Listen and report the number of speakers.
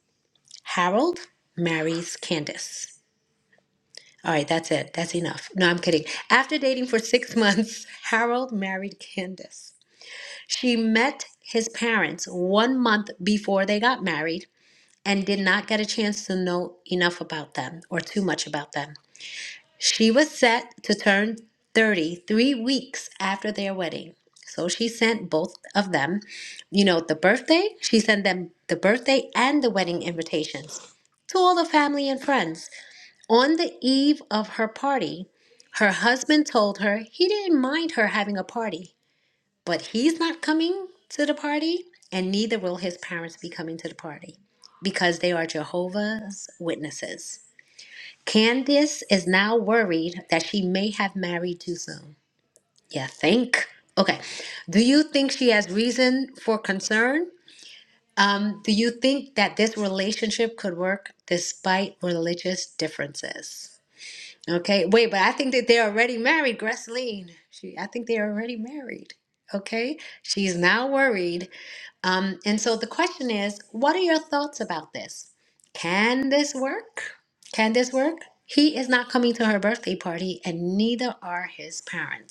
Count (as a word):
one